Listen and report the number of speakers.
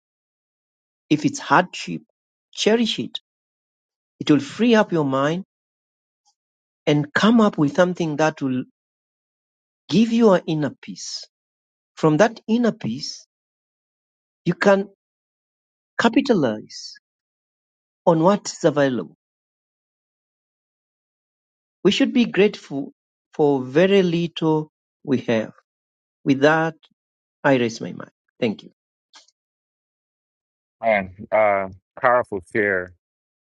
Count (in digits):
2